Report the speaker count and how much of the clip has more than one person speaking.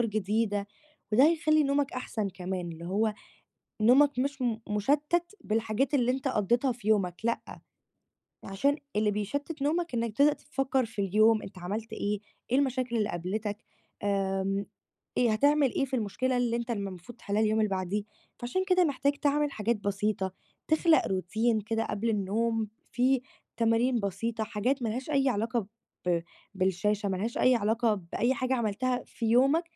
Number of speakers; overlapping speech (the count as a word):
one, no overlap